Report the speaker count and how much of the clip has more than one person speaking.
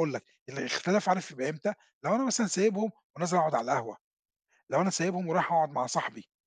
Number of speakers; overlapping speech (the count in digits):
1, no overlap